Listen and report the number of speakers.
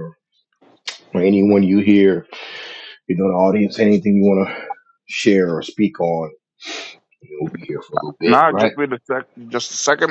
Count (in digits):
2